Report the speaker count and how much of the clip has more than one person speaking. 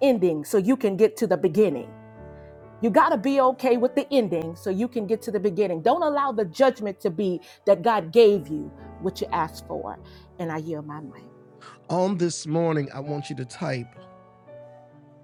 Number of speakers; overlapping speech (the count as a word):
two, no overlap